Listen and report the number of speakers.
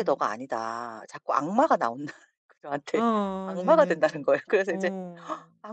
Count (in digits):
2